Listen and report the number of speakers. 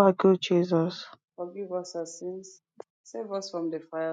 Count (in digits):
2